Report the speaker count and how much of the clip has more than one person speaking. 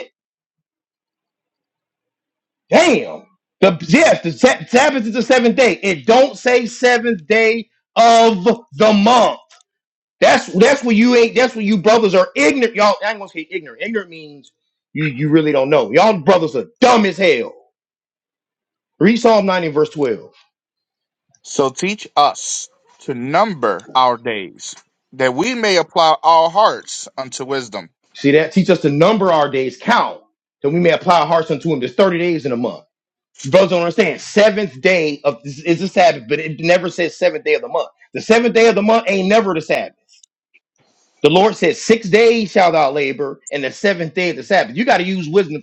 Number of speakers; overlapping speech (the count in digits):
2, no overlap